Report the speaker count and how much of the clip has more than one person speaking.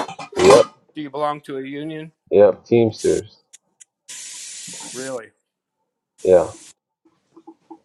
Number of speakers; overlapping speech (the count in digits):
2, no overlap